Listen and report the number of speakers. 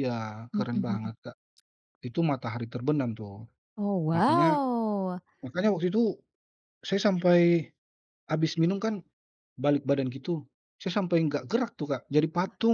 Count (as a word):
two